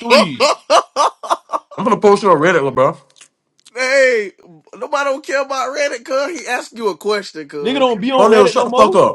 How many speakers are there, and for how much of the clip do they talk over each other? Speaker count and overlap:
three, about 11%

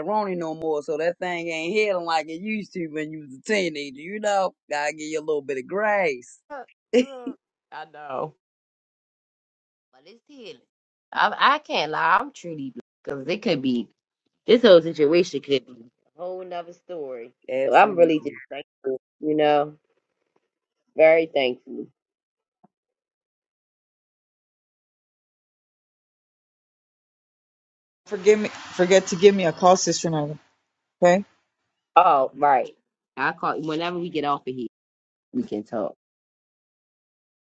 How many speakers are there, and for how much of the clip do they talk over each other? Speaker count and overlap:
three, about 2%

